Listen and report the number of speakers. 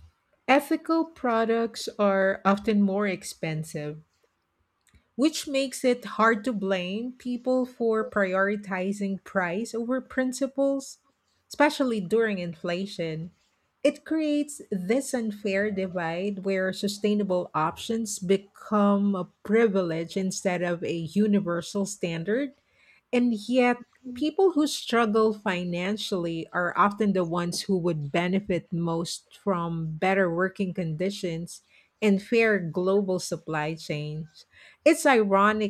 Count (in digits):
1